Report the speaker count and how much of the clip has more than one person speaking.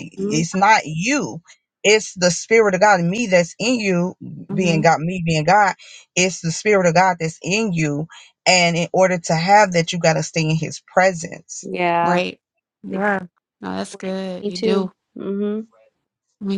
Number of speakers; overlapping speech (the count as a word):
three, about 8%